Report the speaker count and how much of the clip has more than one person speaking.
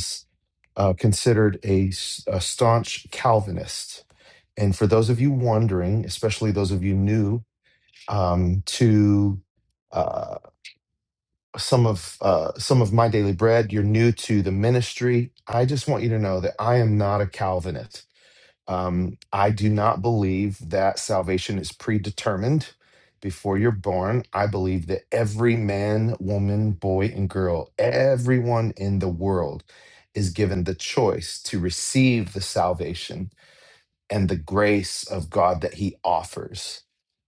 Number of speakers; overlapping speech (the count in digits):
1, no overlap